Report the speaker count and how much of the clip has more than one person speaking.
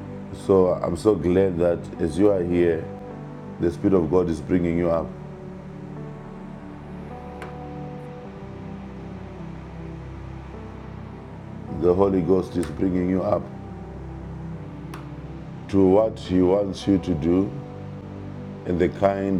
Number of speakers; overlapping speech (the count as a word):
one, no overlap